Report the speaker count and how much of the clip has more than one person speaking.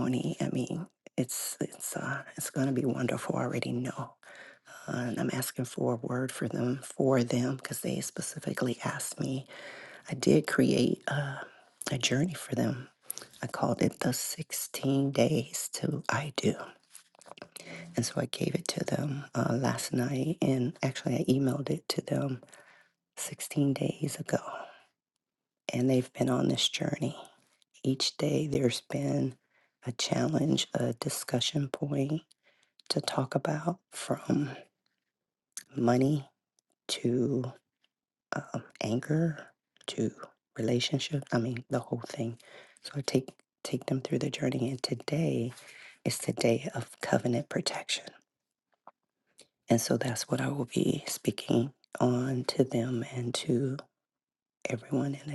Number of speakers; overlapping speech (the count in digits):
1, no overlap